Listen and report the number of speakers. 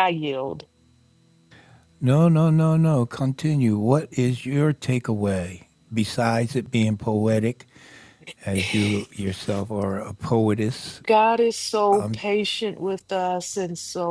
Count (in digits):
2